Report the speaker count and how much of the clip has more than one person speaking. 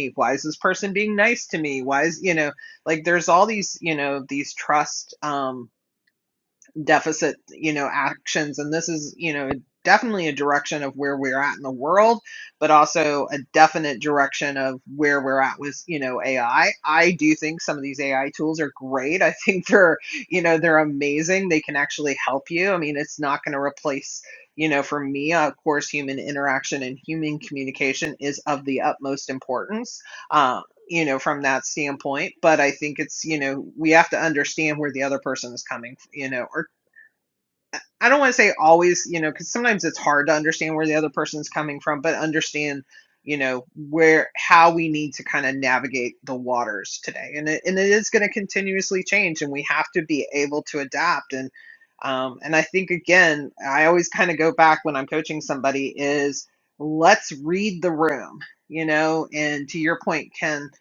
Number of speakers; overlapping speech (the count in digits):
1, no overlap